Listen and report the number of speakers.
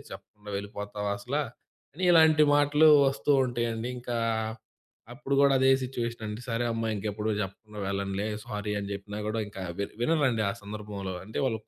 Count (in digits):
1